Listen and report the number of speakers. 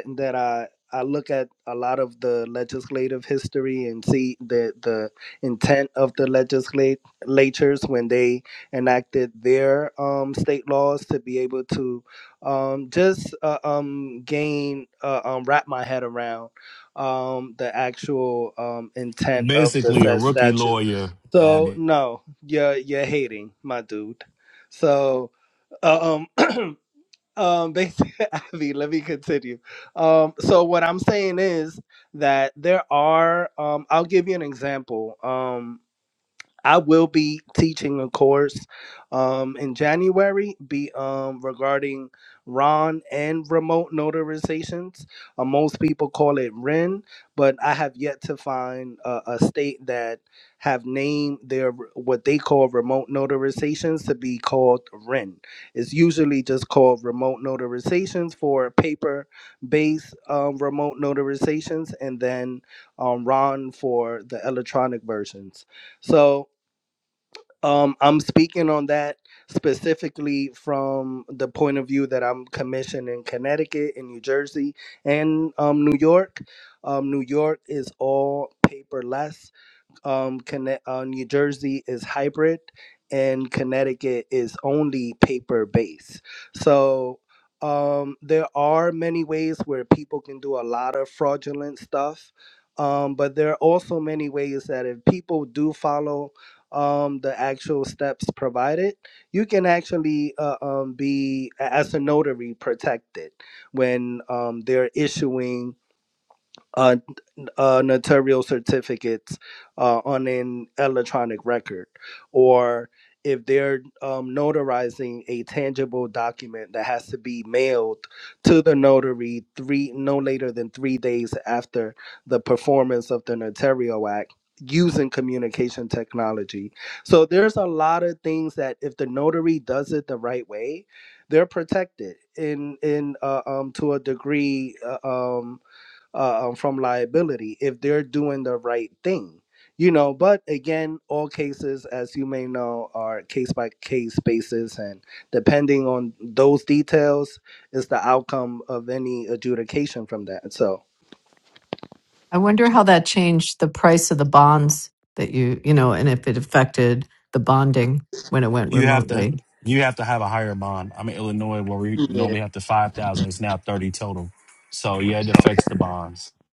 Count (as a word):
three